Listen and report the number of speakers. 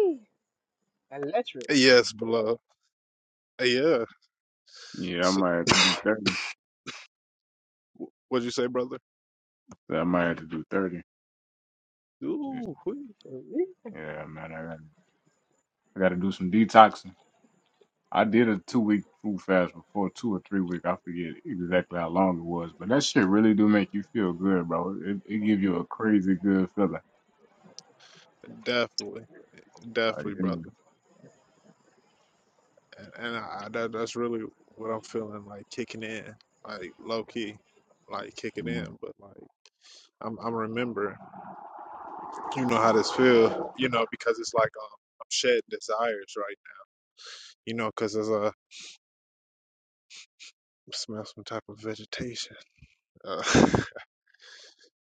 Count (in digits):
3